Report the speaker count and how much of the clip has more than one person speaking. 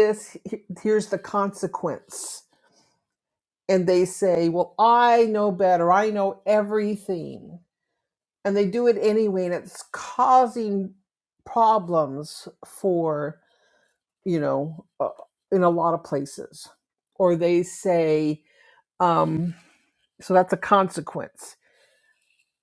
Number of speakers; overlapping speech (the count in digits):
1, no overlap